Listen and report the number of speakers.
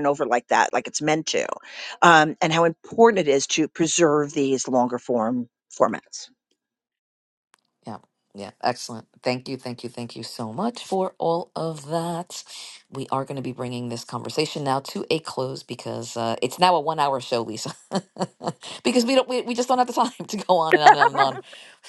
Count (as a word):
two